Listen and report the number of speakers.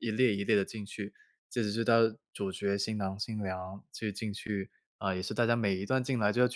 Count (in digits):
1